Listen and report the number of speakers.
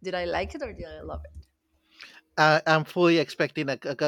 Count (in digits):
2